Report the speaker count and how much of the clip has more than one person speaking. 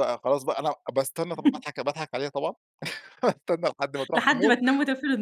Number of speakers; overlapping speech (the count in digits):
2, about 8%